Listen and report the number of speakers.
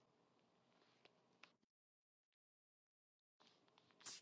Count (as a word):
zero